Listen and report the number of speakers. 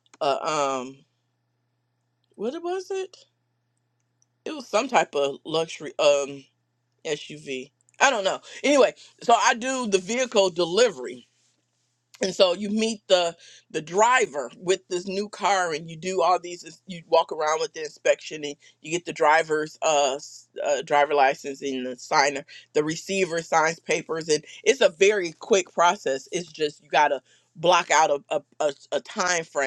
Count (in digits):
1